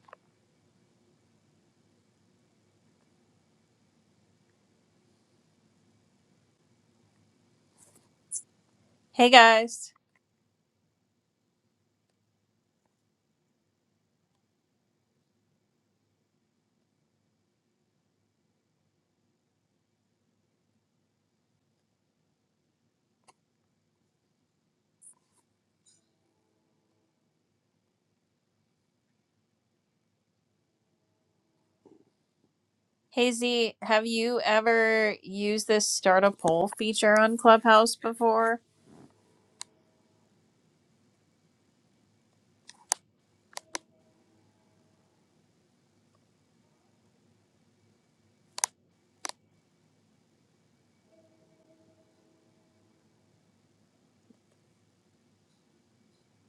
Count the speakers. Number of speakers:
one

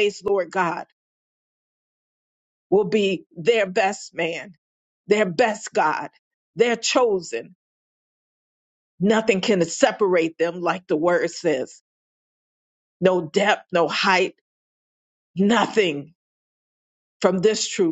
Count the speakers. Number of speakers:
one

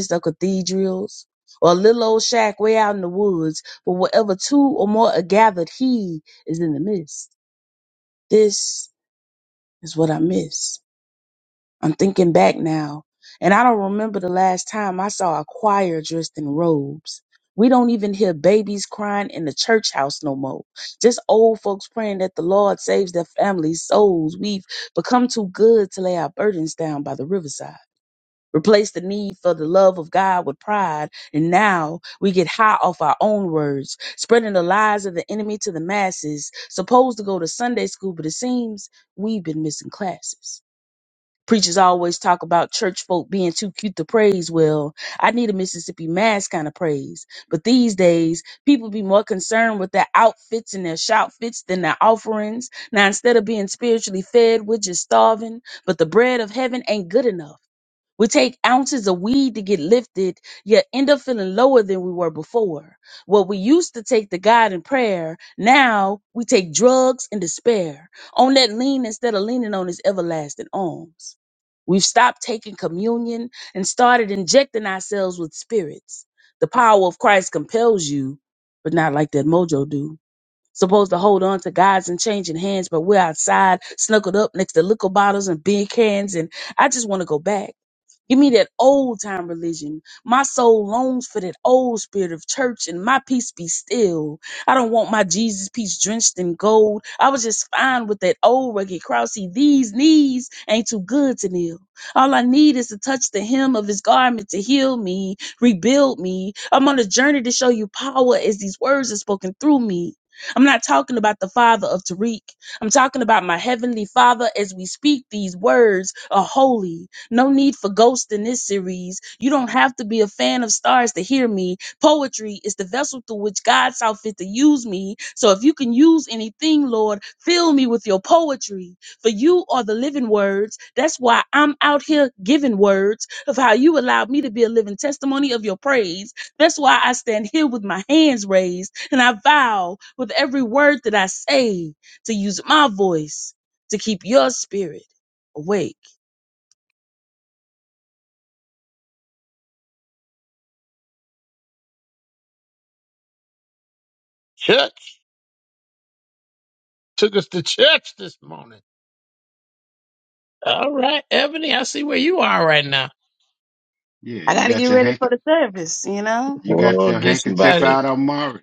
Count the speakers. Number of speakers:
three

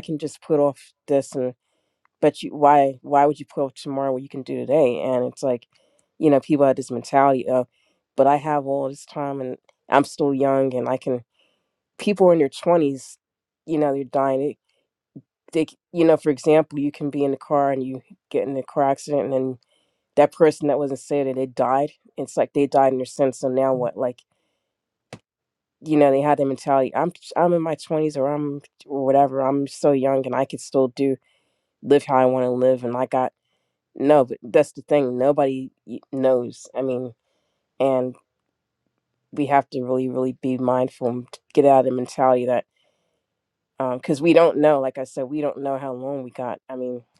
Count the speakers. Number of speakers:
one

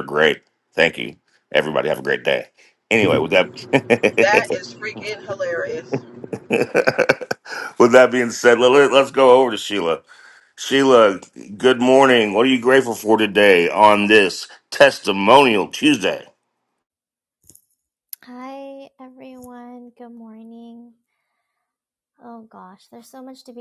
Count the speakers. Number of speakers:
three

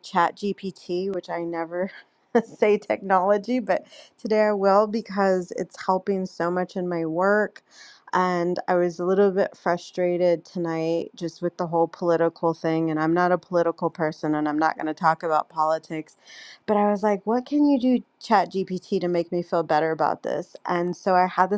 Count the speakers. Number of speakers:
one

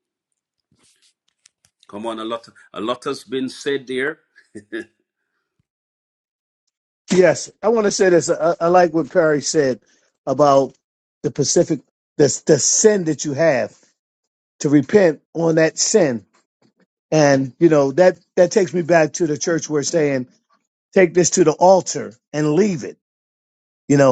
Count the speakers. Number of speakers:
two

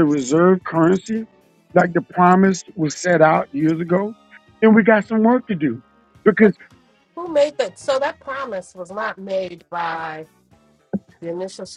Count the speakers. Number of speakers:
two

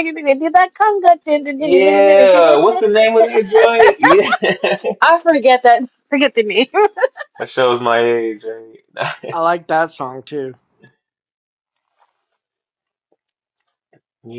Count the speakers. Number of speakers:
three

